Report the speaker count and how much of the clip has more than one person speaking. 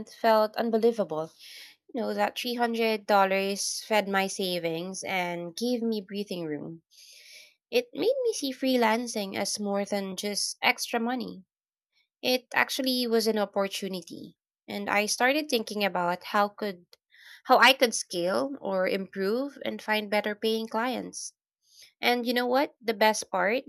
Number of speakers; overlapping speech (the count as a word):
one, no overlap